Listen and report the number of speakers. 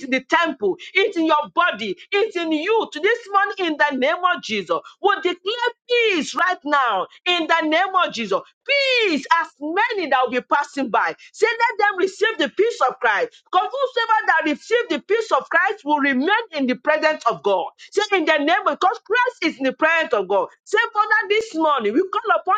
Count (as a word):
one